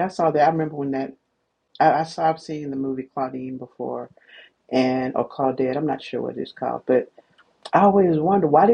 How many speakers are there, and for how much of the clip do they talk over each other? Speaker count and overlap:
1, no overlap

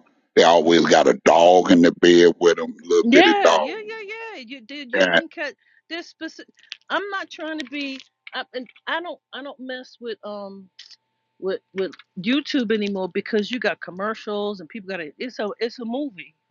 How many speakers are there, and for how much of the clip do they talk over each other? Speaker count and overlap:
2, about 6%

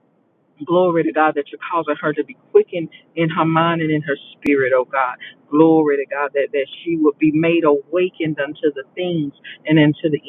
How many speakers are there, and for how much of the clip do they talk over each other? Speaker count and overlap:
1, no overlap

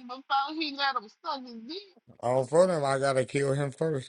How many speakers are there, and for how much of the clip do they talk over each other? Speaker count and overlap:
2, no overlap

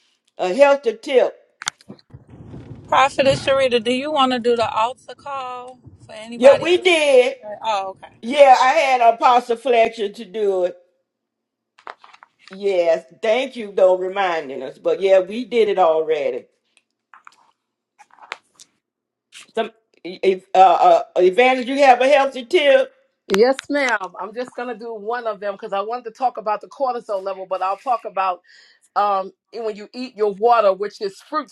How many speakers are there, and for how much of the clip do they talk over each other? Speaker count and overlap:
3, about 1%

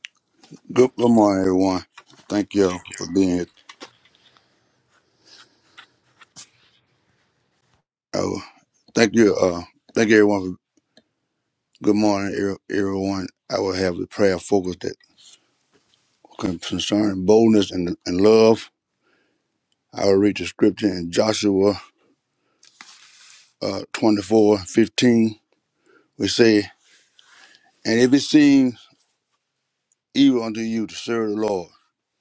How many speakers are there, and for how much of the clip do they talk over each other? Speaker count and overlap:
1, no overlap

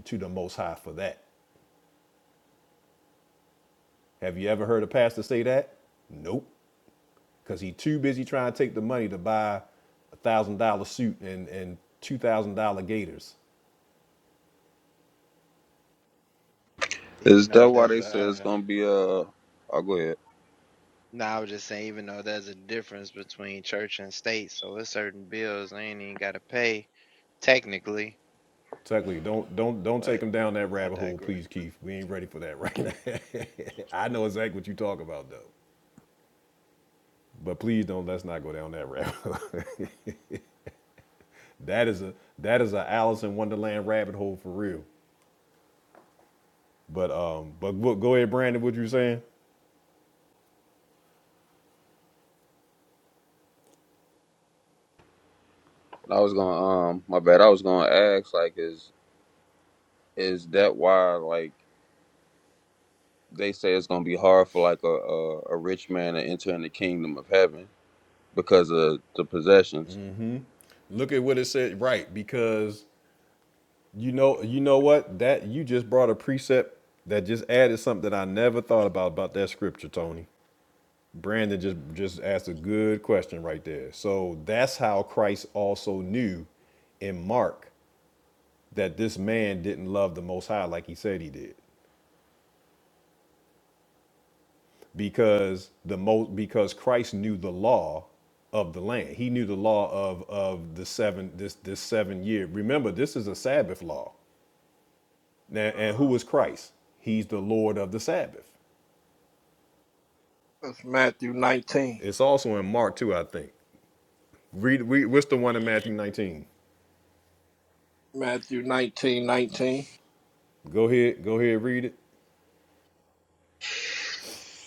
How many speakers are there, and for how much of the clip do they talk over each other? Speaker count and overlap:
4, about 2%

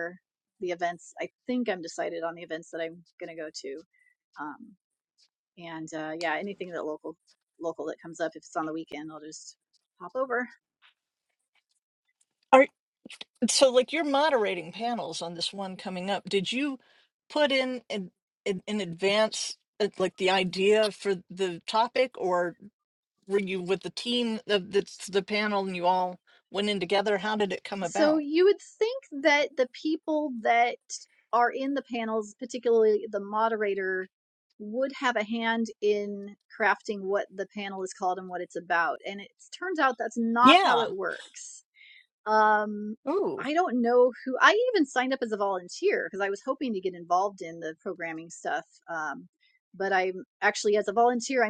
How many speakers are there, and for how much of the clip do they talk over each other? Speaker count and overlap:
2, about 2%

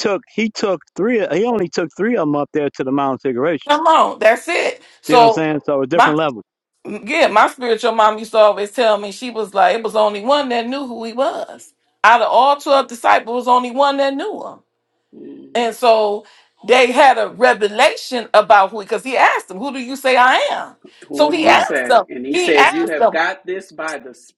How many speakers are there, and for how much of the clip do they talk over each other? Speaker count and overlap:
3, about 10%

